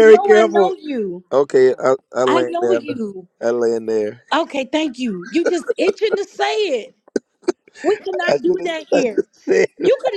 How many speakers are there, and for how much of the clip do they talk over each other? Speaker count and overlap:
two, about 24%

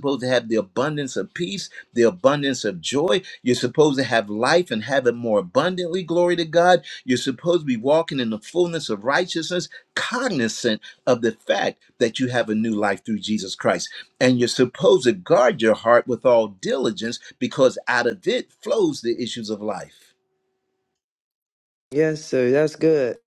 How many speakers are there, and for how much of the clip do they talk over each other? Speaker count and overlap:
two, no overlap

